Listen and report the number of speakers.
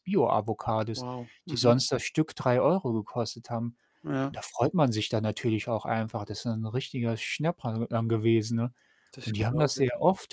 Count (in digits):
2